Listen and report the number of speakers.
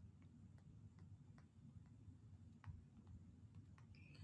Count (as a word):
zero